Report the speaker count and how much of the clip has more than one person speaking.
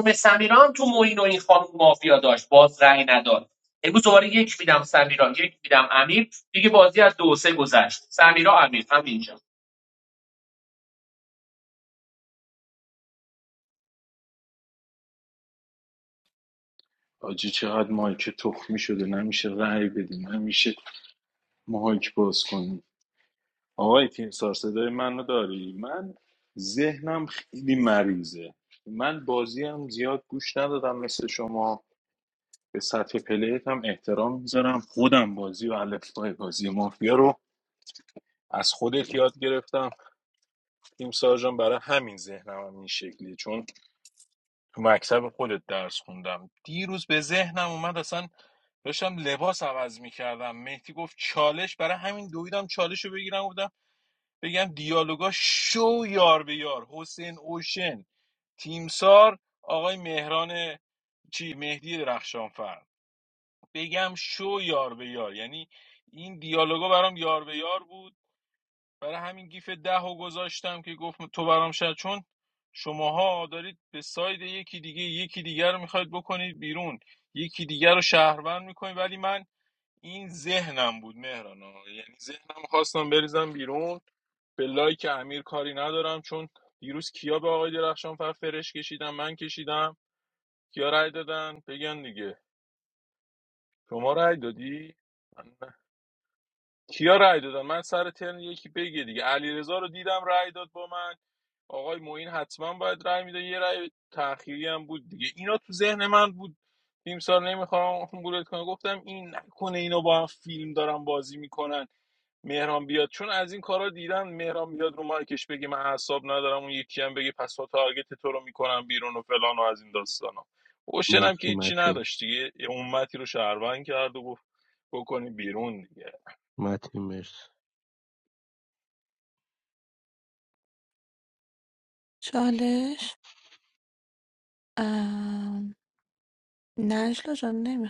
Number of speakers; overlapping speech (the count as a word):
four, about 1%